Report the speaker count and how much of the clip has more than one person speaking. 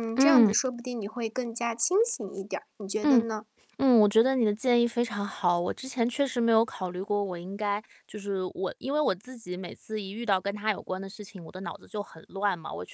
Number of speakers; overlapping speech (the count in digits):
2, about 5%